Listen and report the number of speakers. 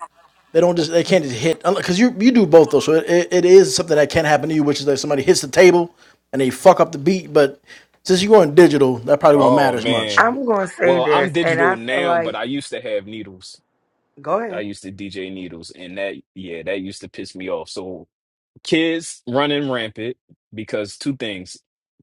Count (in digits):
3